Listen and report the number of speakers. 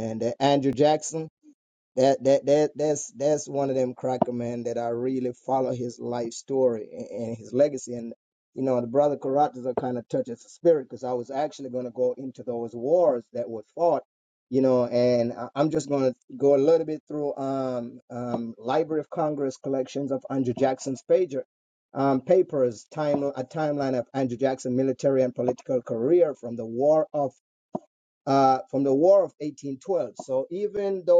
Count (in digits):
1